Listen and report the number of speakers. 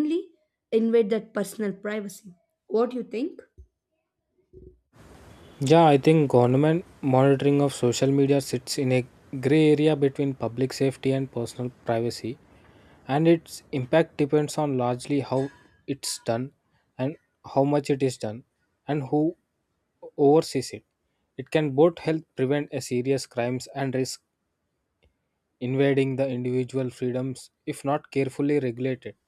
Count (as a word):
two